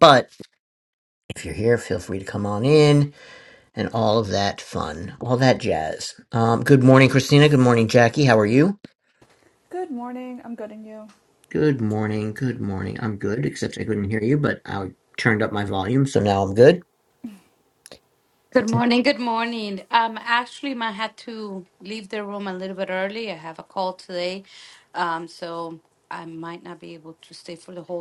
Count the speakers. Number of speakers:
3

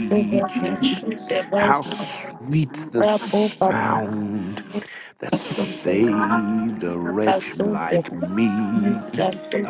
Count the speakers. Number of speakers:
2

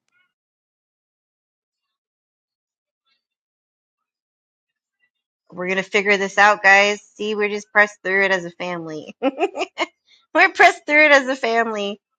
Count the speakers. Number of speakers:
1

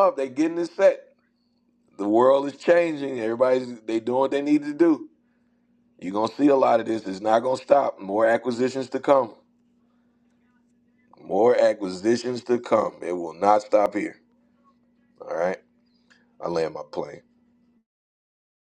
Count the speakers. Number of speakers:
1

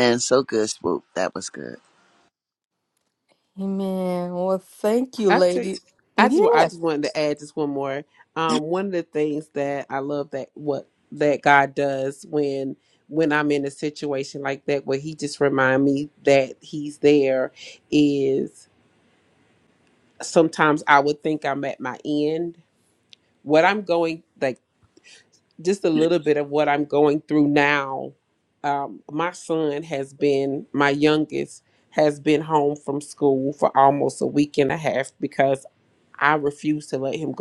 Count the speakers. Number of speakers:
3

